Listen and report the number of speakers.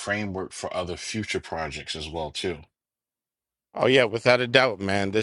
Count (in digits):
2